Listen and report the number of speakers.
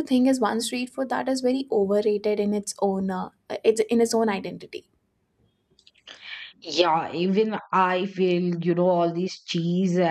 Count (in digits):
2